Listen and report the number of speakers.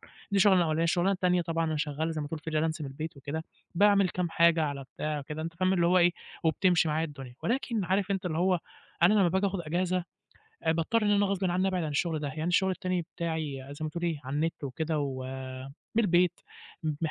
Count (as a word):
one